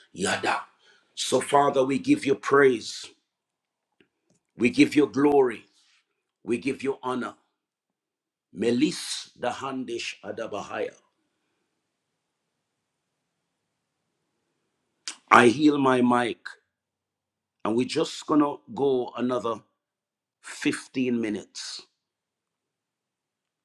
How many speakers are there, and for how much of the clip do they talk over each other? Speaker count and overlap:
one, no overlap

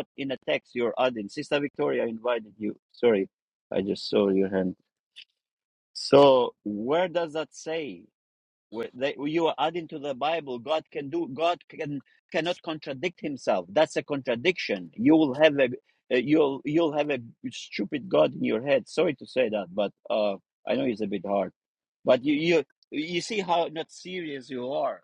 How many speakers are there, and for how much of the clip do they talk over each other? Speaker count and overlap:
one, no overlap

